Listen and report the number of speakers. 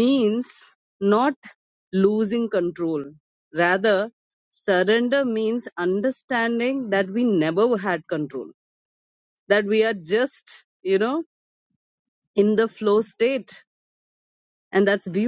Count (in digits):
1